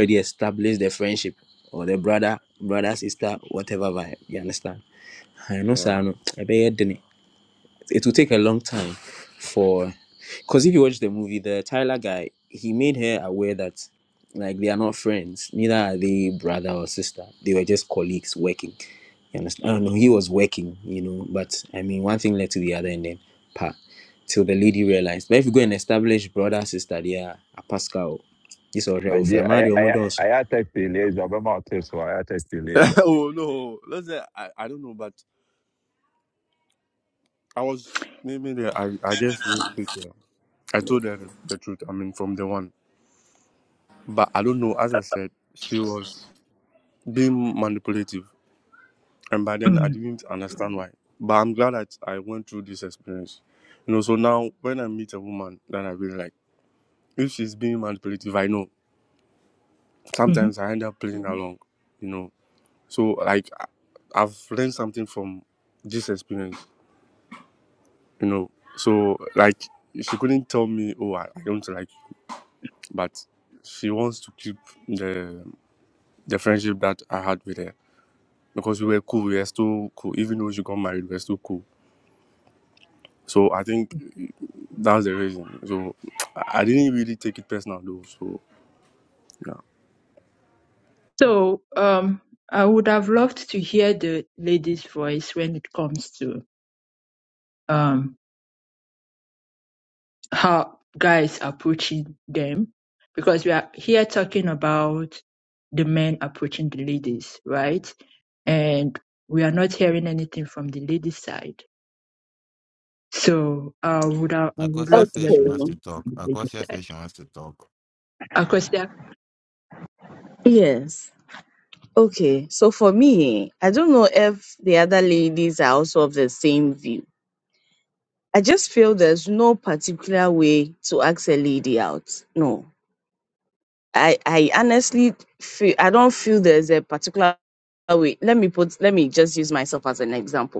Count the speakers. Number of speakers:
6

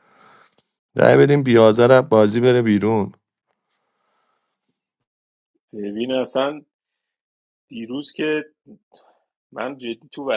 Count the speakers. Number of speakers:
2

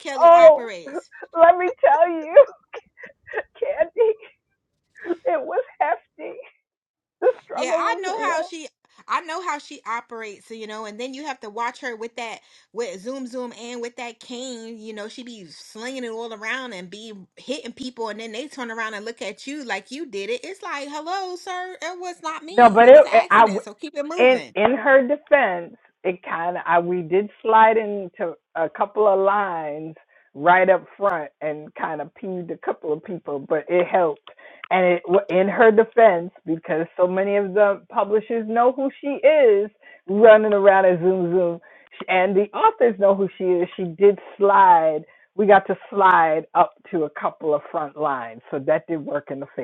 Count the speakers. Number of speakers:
2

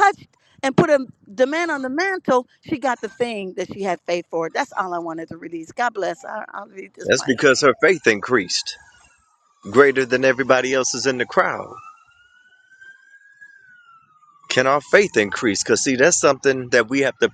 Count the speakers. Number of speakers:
2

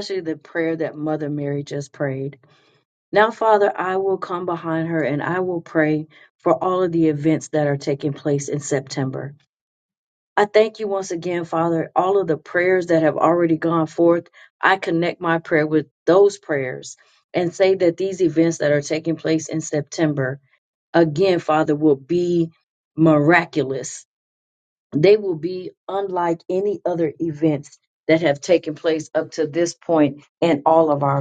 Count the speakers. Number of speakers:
1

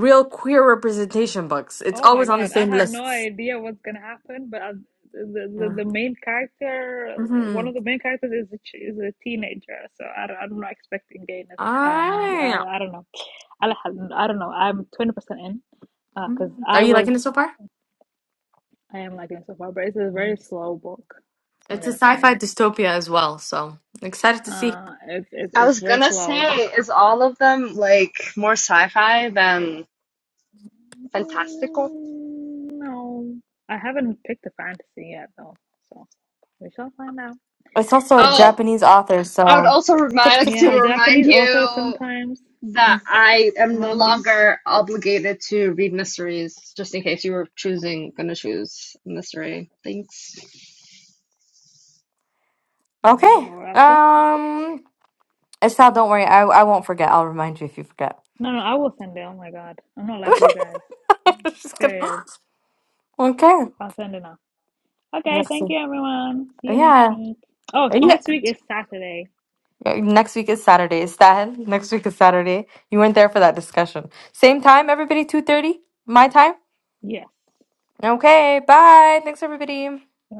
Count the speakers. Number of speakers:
3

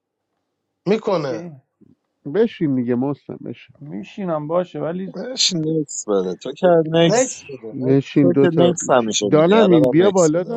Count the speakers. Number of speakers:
4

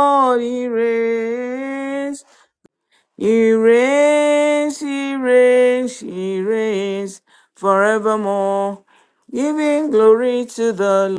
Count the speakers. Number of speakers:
1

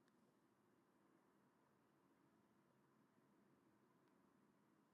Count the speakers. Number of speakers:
0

